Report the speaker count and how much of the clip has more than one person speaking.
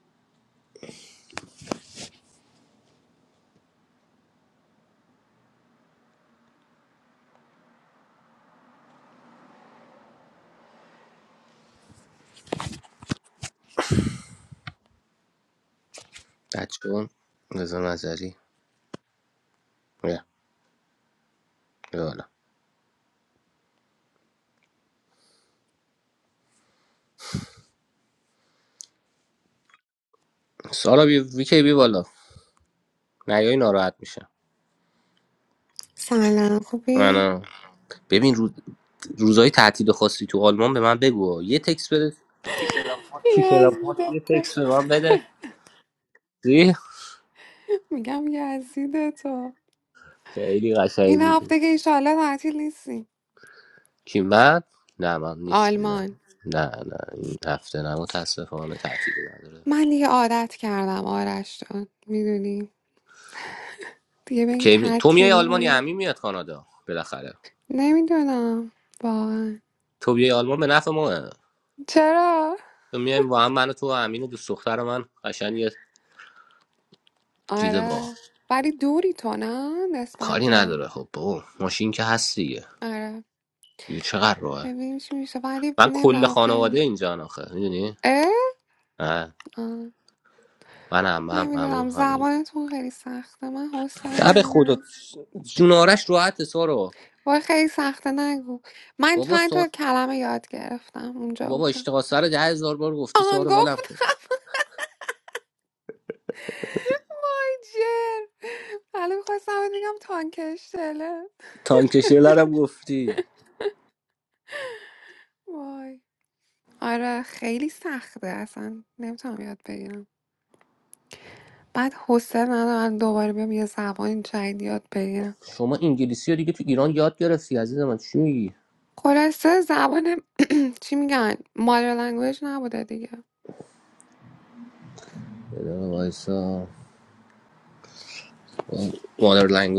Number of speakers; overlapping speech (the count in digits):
2, about 6%